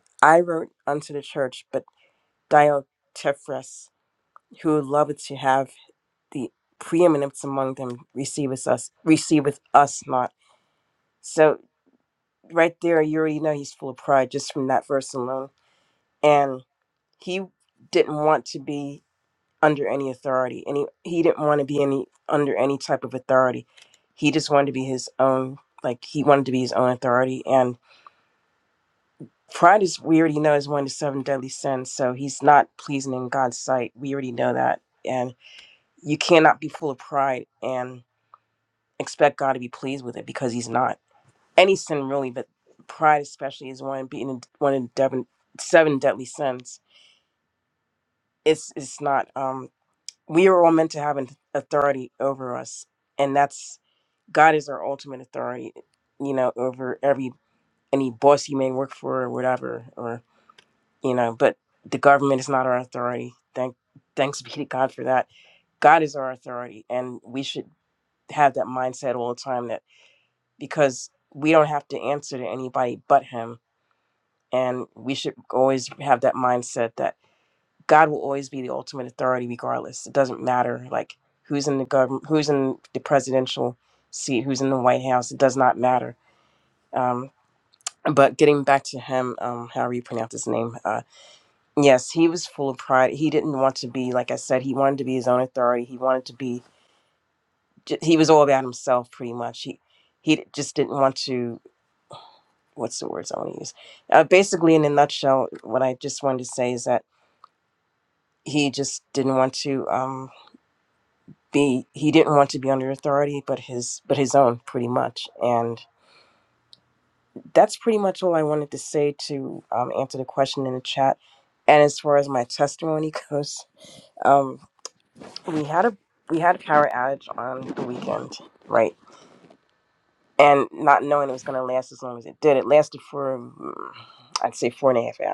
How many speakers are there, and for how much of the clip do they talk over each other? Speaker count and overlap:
one, no overlap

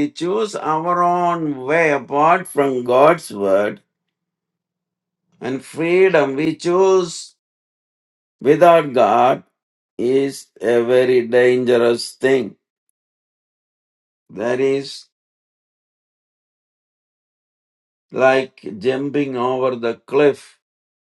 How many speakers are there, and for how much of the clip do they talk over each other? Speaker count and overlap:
one, no overlap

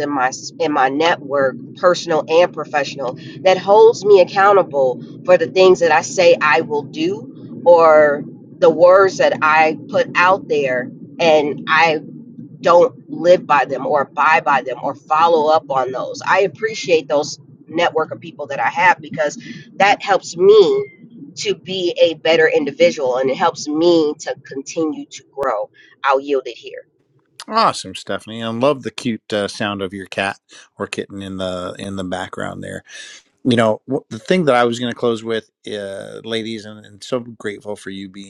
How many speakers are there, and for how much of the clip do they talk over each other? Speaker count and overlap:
two, no overlap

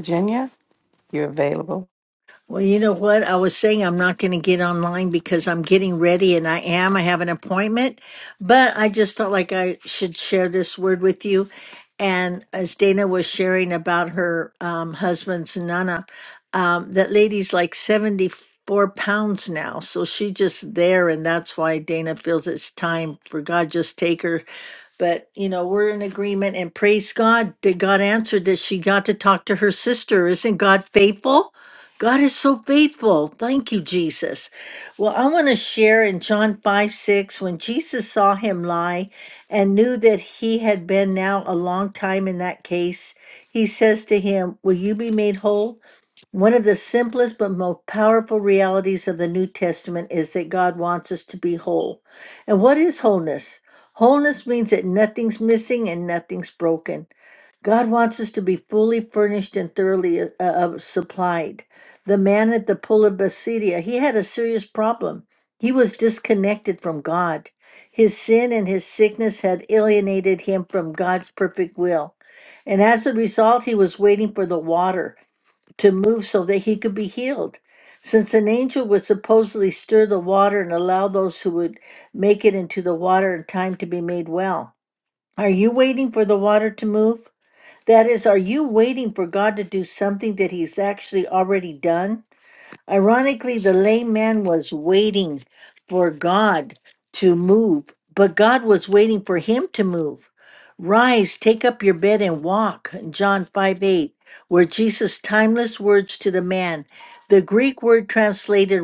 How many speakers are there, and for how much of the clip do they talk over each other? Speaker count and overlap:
two, no overlap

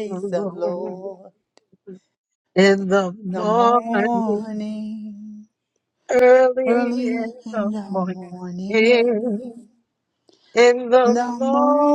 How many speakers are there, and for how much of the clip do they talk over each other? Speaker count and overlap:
two, about 39%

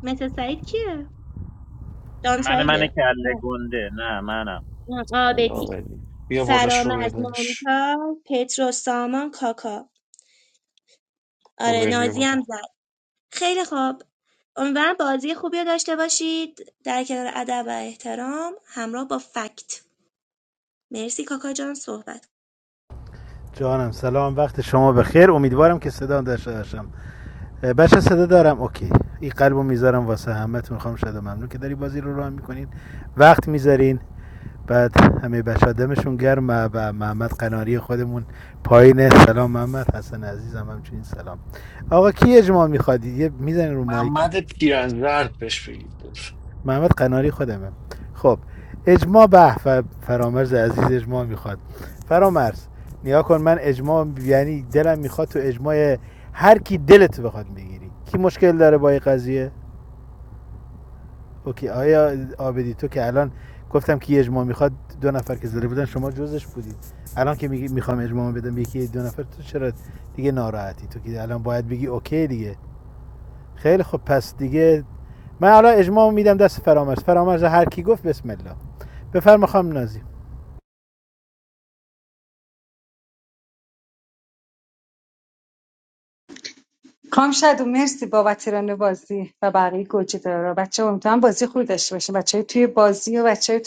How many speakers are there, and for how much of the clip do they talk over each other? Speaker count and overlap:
five, about 4%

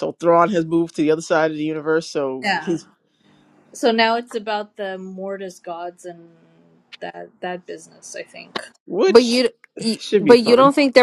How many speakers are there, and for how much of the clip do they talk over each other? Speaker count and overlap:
three, about 13%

